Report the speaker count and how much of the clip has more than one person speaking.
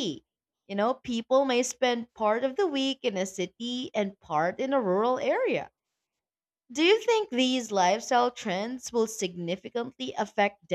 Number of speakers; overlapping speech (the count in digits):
1, no overlap